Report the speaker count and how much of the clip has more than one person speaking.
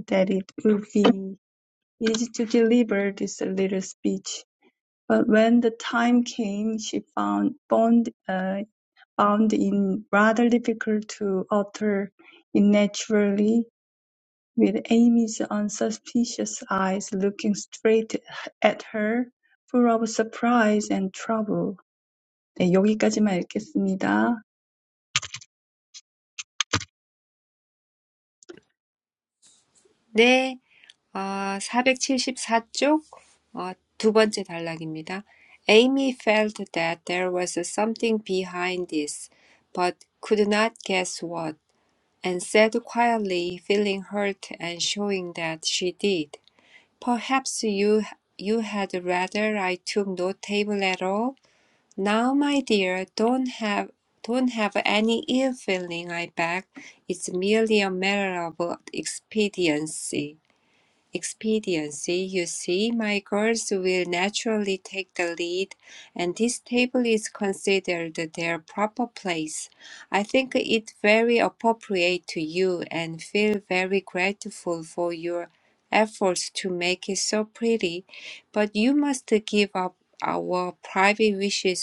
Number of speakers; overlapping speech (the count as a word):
two, no overlap